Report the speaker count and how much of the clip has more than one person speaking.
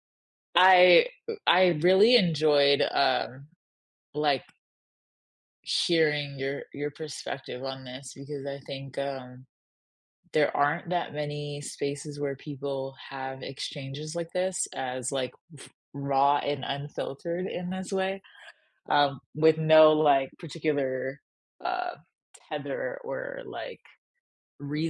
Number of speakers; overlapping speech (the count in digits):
1, no overlap